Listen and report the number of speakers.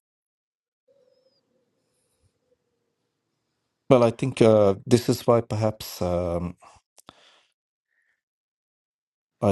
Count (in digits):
1